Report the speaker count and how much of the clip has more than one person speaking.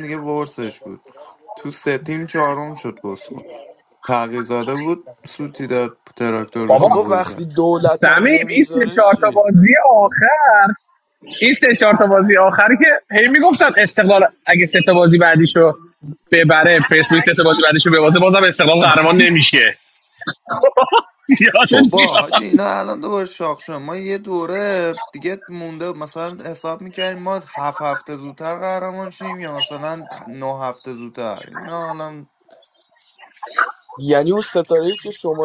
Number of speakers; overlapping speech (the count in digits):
3, about 9%